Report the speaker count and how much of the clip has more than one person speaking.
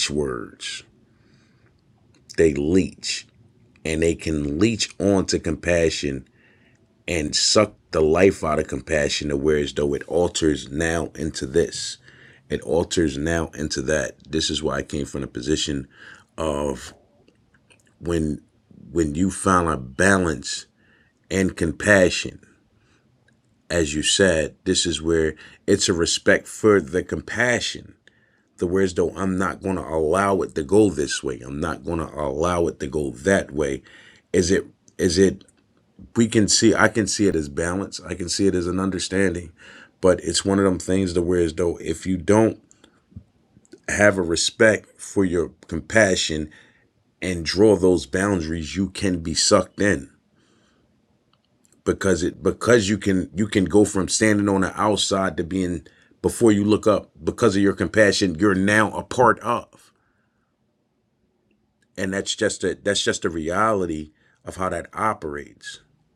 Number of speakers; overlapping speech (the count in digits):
1, no overlap